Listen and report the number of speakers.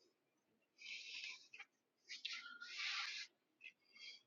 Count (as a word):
zero